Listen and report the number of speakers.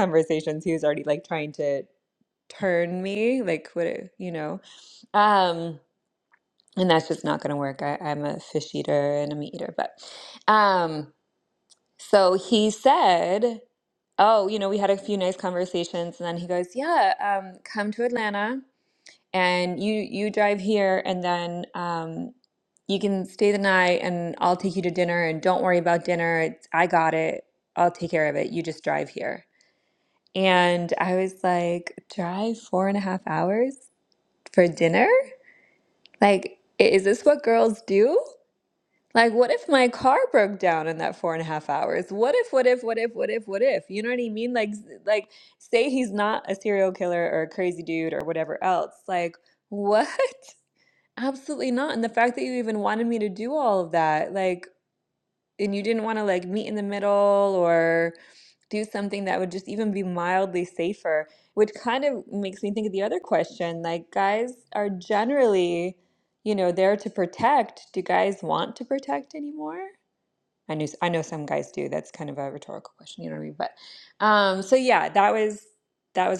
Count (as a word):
one